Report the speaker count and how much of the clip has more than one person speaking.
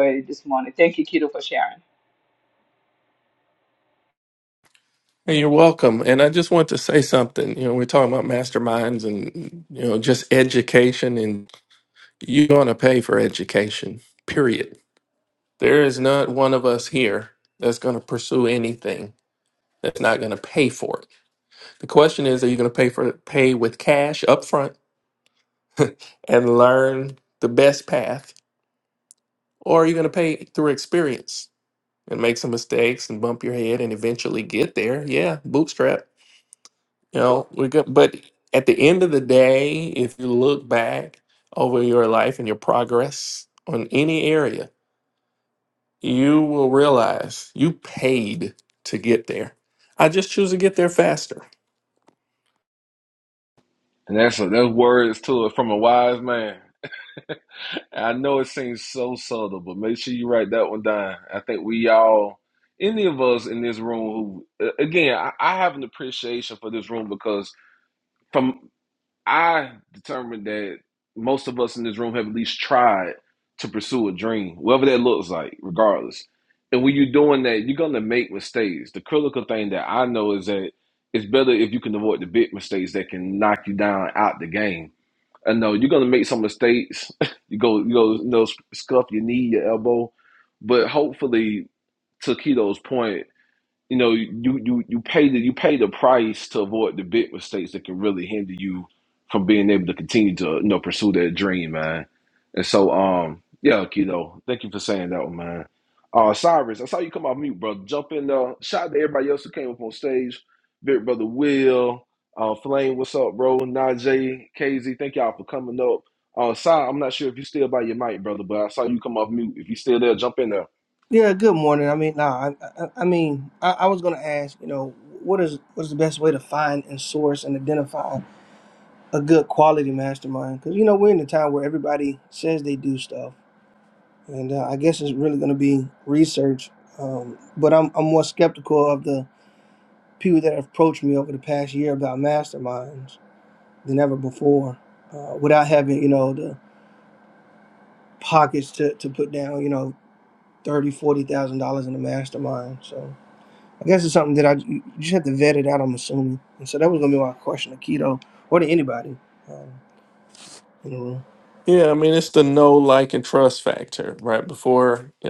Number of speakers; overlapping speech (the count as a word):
four, no overlap